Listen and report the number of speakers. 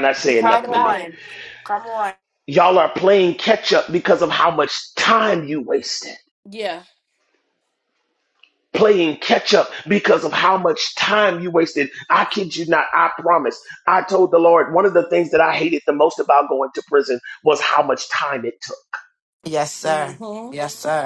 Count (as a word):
three